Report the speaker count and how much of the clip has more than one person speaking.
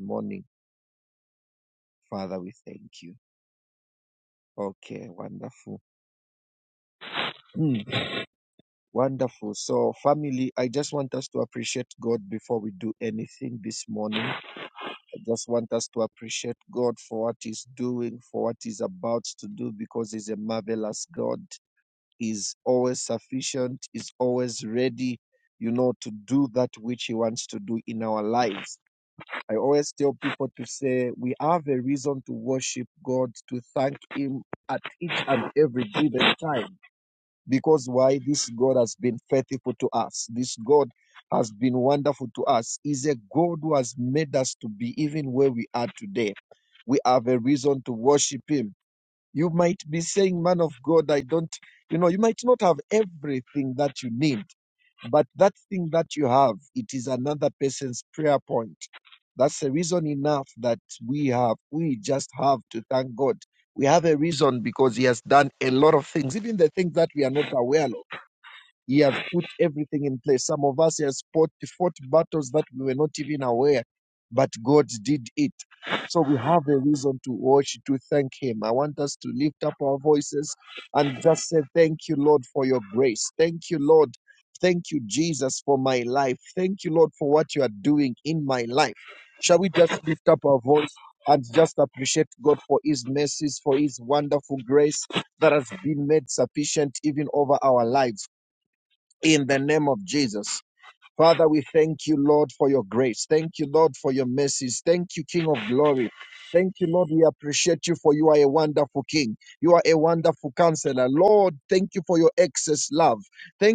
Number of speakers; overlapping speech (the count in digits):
1, no overlap